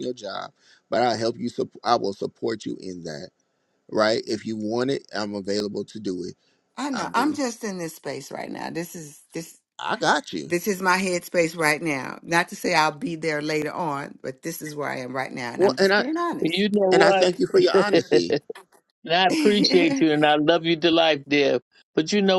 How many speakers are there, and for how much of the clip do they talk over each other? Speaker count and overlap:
3, about 6%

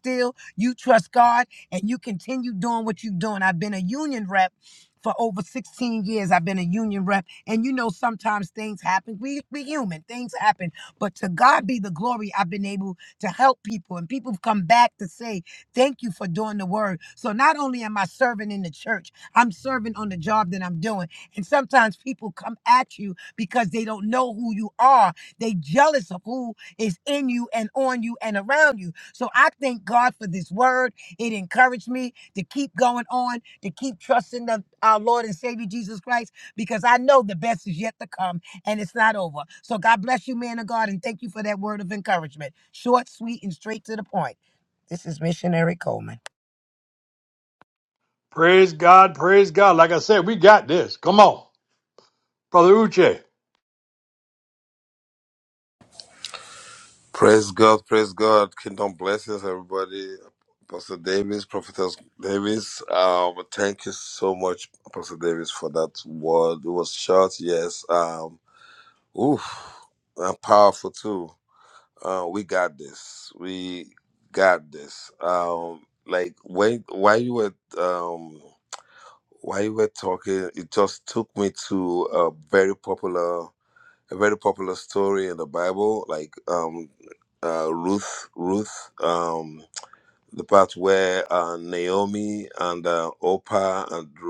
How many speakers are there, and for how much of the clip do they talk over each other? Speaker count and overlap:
3, no overlap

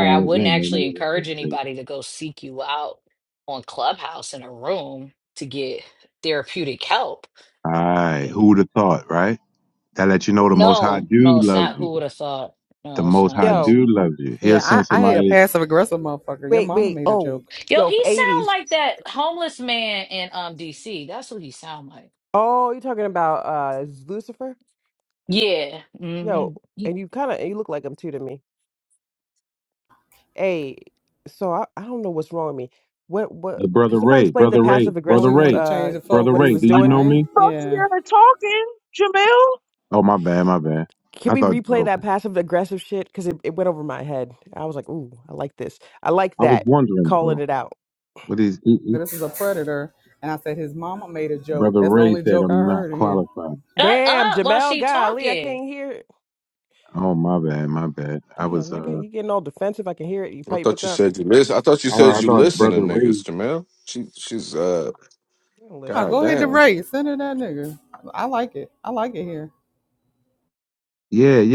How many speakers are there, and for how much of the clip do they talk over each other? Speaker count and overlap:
6, about 27%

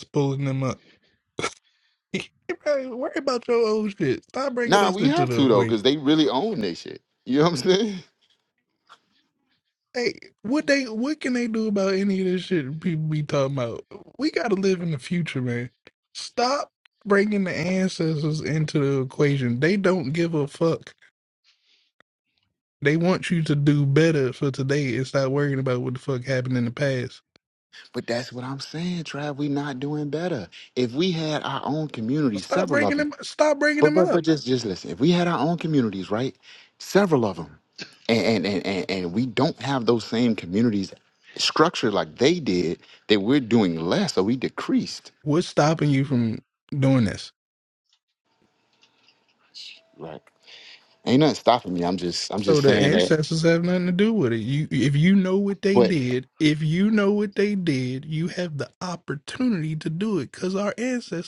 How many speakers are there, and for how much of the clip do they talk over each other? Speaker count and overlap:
2, about 5%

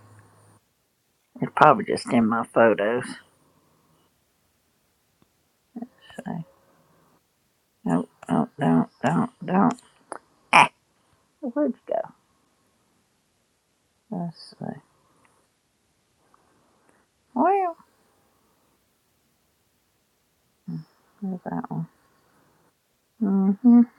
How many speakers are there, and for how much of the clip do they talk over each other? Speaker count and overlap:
1, no overlap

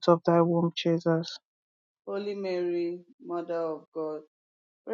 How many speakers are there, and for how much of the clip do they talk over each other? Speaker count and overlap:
2, no overlap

